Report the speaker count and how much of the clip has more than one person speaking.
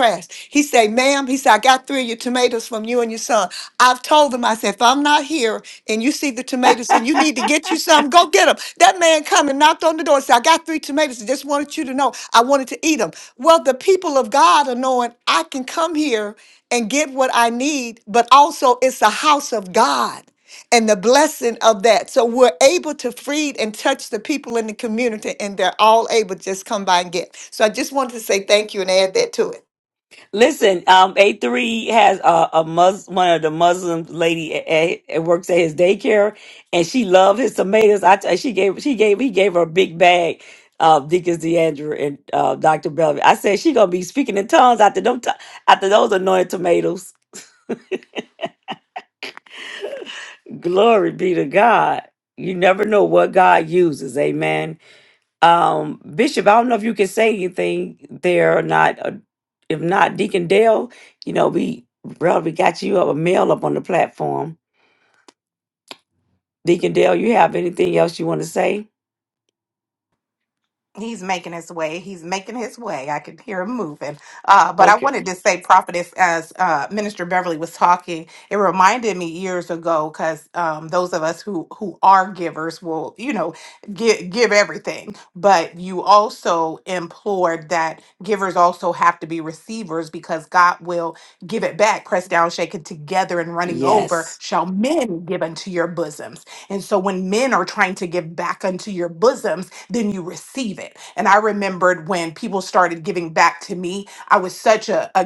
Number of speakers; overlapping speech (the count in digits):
3, about 1%